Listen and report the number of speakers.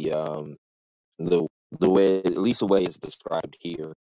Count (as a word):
one